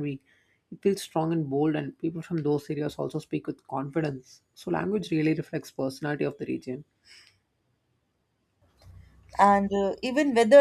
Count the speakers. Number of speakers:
two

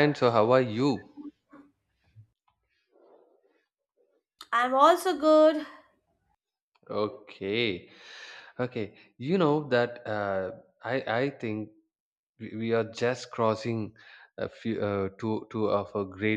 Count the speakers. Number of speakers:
two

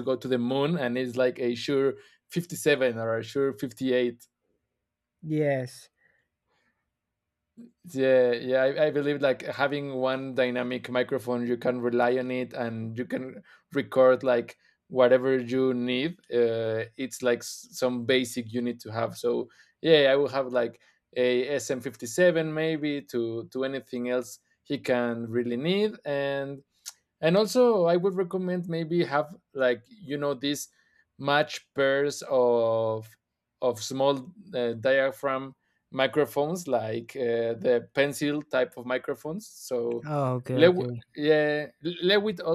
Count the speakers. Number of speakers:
two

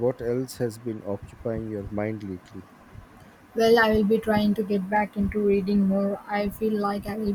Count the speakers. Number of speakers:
two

